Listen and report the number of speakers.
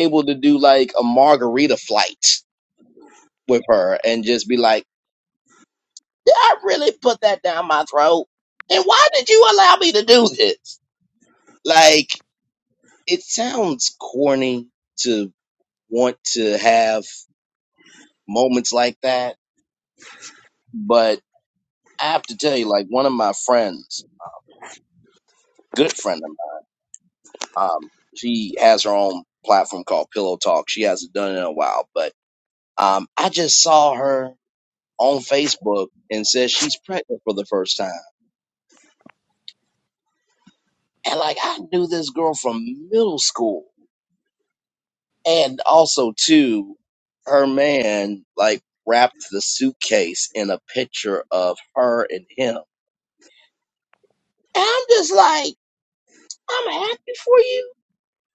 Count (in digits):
1